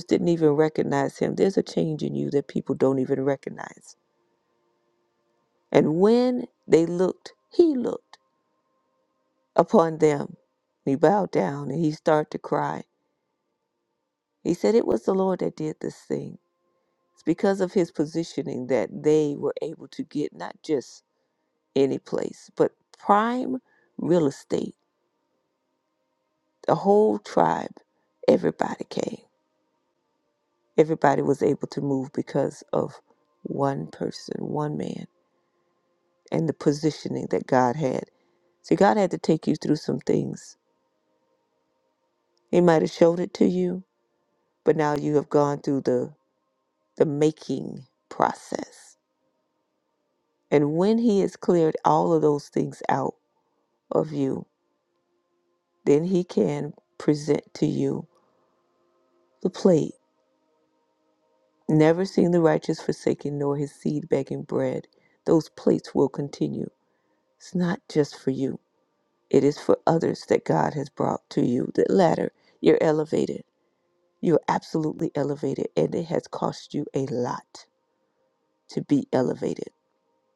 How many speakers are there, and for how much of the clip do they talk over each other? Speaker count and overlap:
one, no overlap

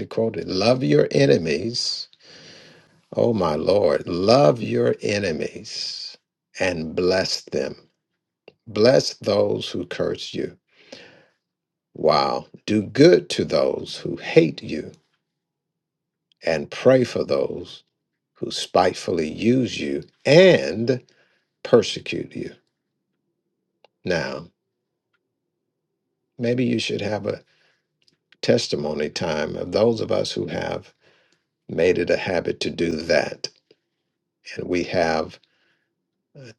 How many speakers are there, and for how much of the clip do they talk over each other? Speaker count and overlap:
one, no overlap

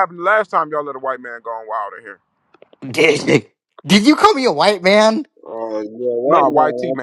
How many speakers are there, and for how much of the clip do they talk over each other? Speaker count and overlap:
three, about 11%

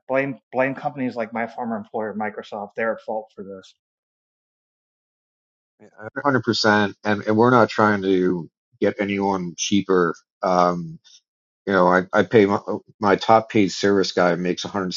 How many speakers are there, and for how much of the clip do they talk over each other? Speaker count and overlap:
two, no overlap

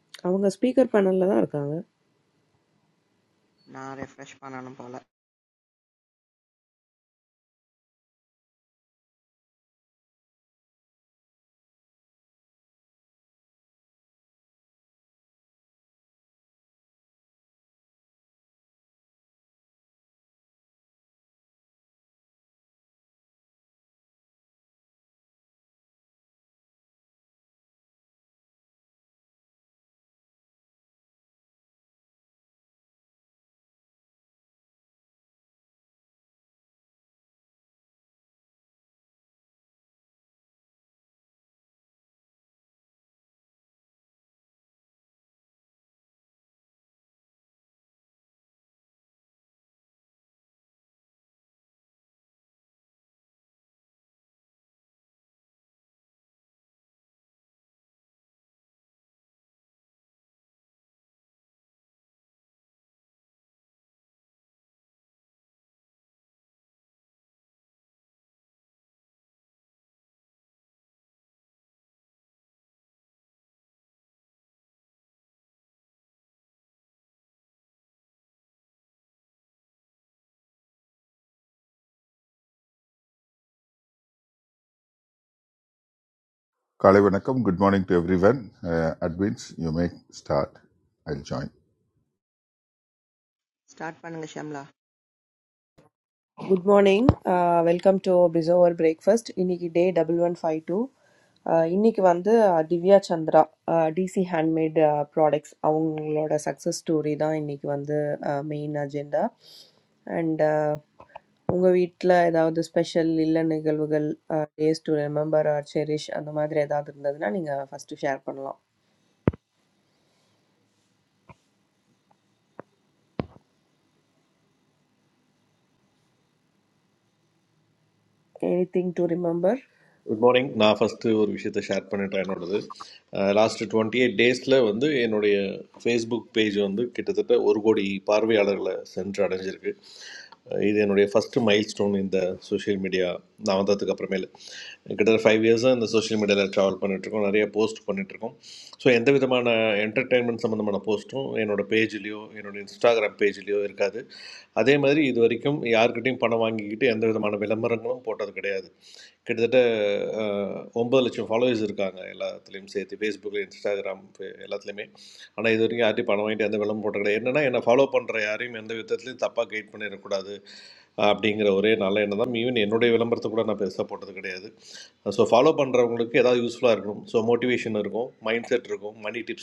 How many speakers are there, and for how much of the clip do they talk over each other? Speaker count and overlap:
four, no overlap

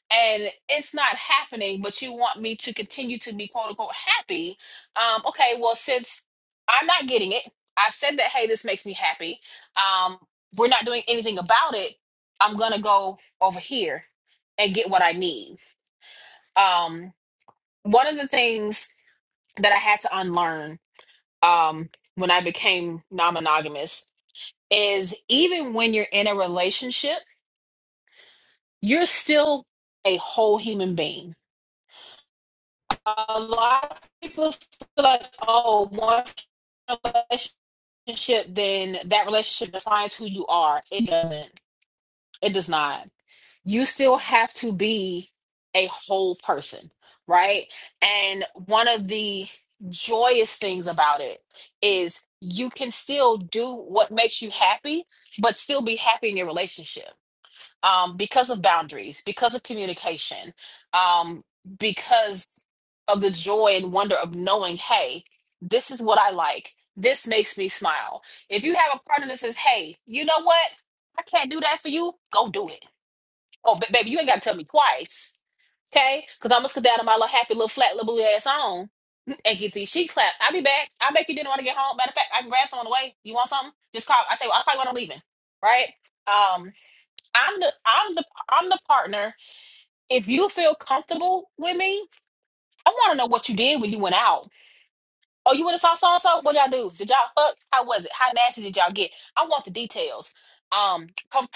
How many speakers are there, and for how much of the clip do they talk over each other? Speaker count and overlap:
one, no overlap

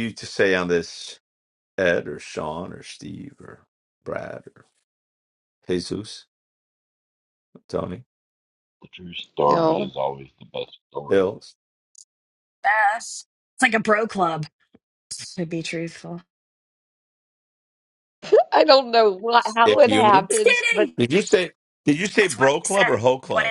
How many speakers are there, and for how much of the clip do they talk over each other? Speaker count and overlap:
four, about 11%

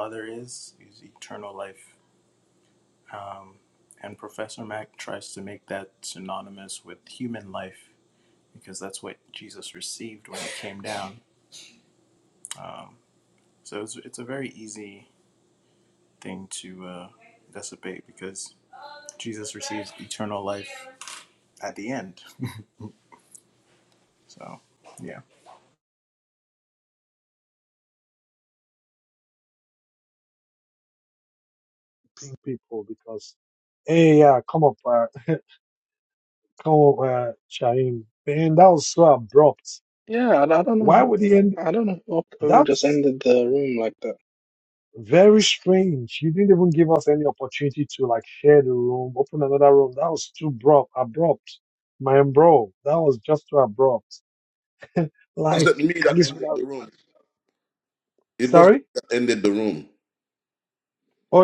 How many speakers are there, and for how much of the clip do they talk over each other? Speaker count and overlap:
four, about 2%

